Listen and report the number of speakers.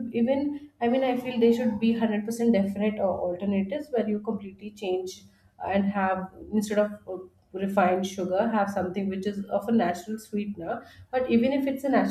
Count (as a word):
one